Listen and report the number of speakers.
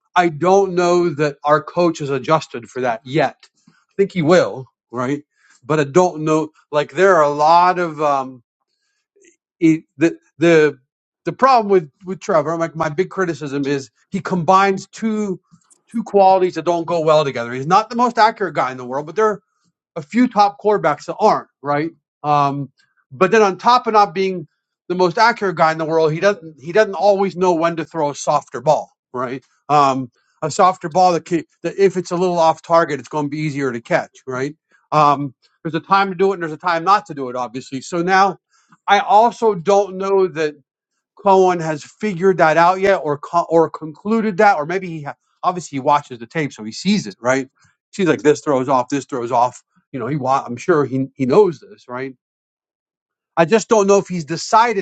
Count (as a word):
one